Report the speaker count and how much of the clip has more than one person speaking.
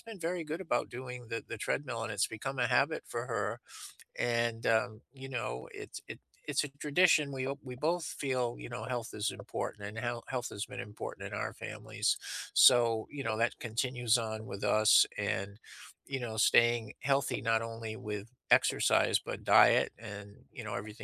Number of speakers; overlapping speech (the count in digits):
1, no overlap